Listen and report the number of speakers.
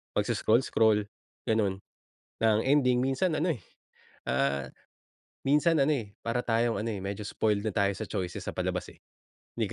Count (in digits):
1